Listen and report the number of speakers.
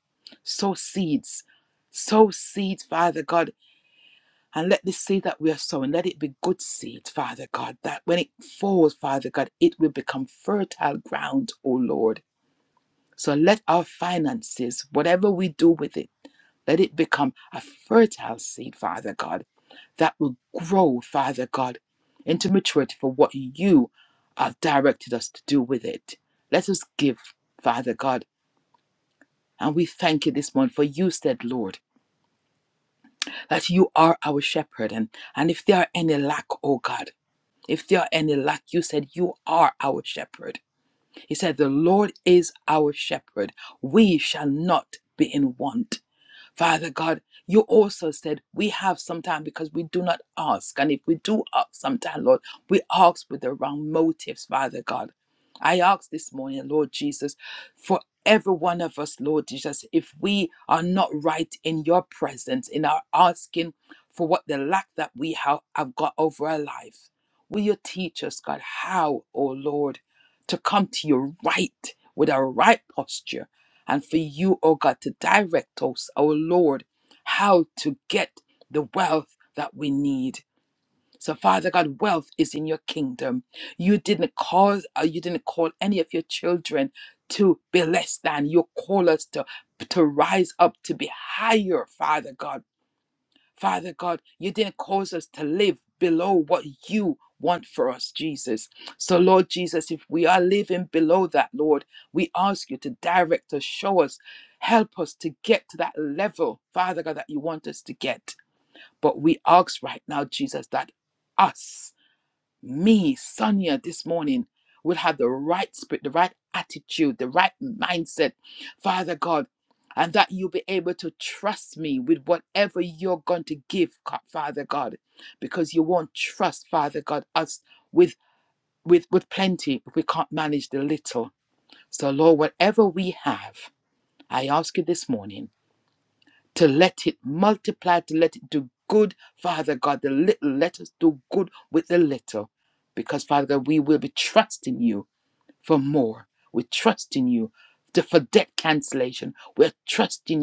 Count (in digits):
1